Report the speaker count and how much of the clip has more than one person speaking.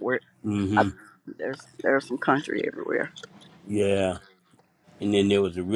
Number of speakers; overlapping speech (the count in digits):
2, about 2%